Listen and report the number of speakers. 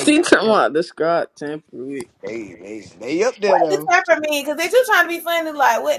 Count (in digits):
3